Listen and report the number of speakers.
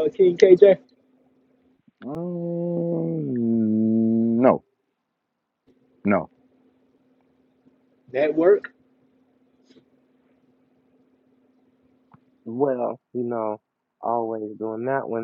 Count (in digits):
3